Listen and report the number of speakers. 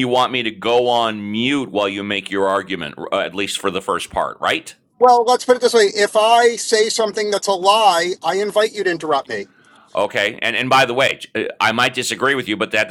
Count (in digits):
2